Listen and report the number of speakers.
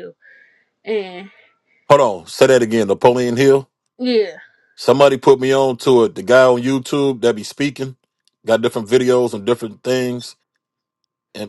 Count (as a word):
two